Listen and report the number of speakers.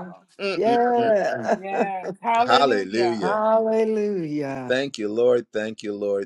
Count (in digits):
3